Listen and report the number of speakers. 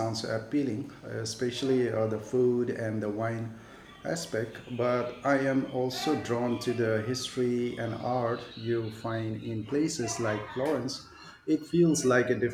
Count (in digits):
1